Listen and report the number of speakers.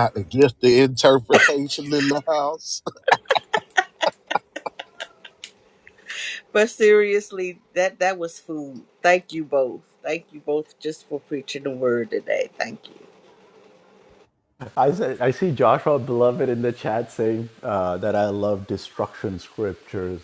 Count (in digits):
3